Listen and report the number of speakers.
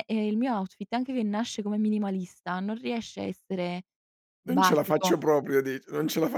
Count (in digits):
2